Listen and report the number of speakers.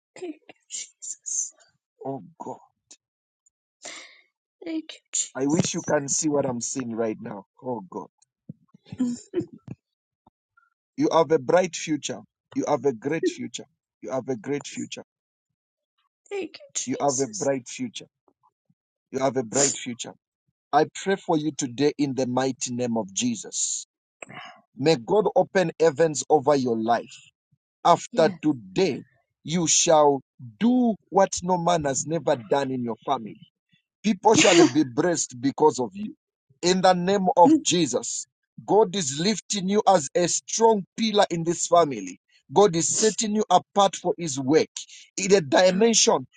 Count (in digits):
2